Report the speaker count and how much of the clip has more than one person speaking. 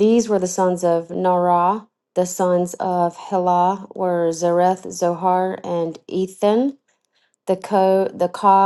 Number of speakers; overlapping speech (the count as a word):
one, no overlap